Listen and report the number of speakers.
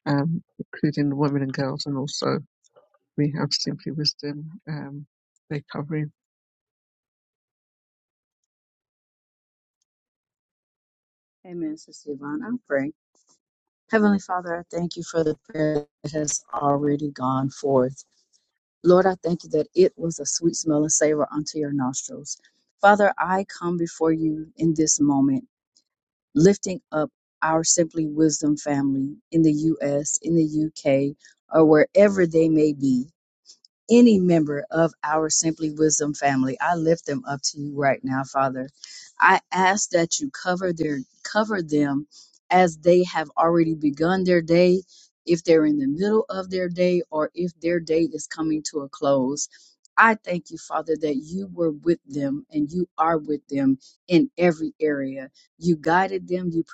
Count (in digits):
2